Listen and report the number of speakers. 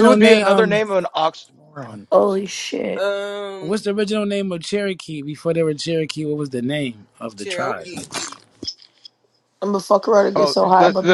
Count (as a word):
four